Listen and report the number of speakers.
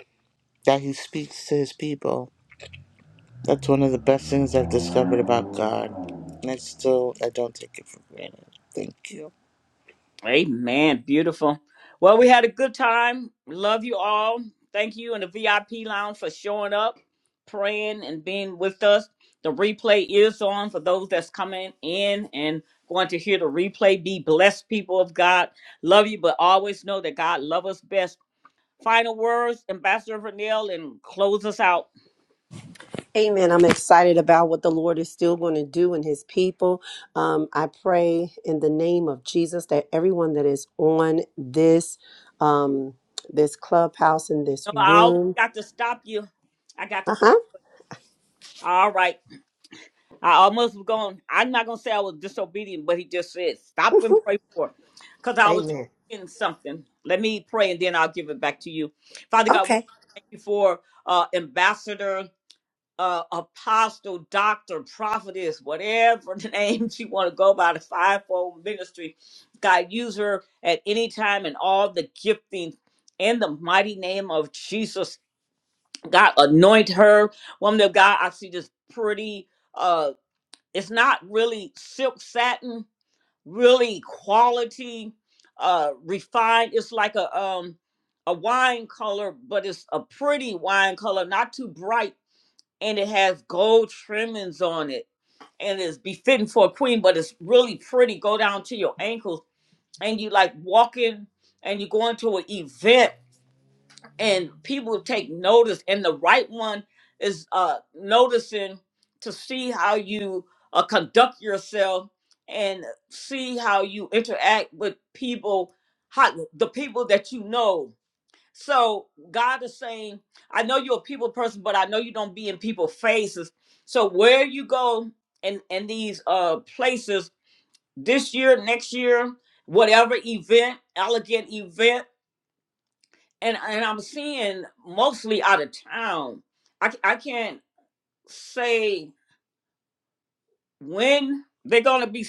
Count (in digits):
3